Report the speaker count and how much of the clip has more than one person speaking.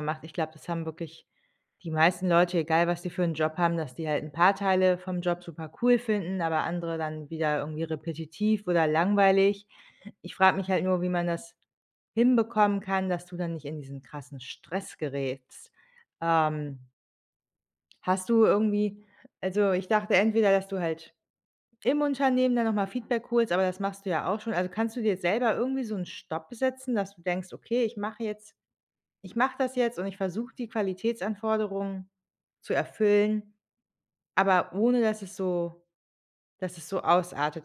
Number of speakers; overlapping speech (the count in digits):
1, no overlap